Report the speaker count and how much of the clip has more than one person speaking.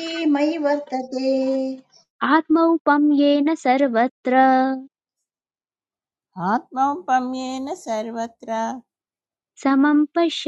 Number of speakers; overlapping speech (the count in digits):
3, no overlap